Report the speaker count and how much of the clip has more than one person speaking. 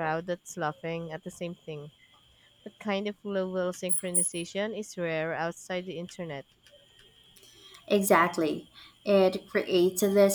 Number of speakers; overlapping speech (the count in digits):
2, no overlap